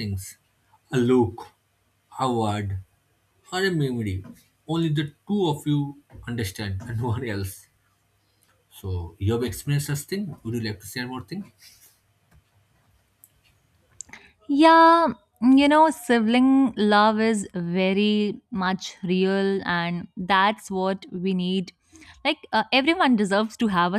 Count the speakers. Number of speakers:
2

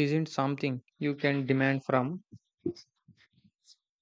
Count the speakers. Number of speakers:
1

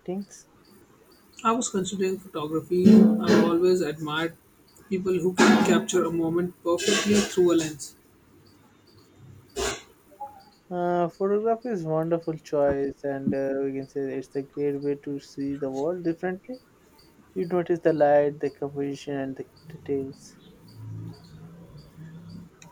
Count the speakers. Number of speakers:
2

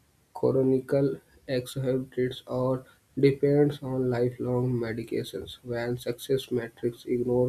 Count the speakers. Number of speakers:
1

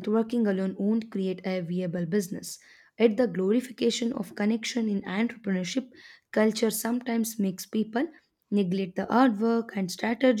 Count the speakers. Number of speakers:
1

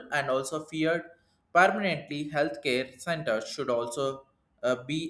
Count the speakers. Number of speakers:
1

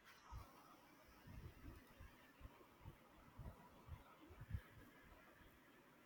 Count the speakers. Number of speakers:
0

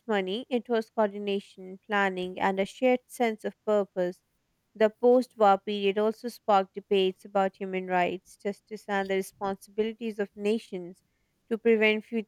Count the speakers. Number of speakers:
1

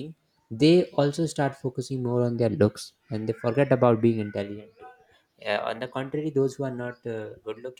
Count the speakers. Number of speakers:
1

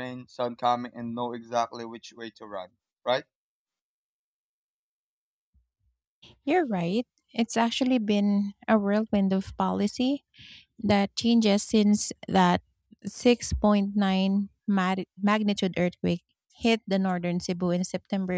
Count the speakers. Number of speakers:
2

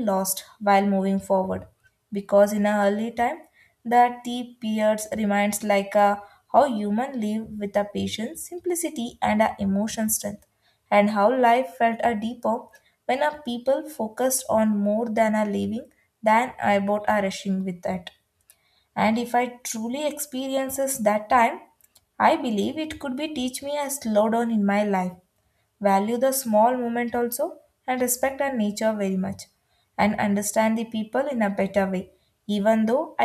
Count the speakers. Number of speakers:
1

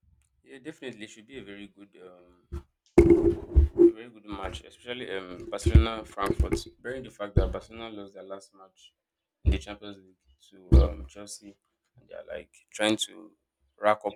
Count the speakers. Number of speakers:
1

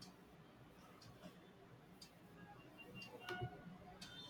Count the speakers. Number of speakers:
0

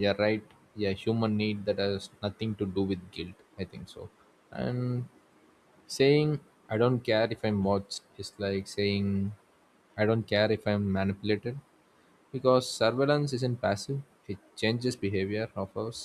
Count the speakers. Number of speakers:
1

